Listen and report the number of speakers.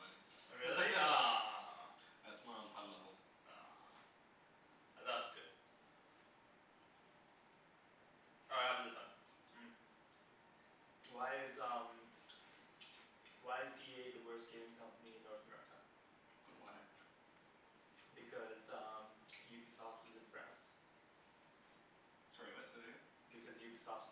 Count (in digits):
2